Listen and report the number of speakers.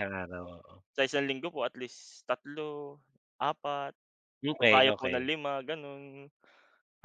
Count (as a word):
two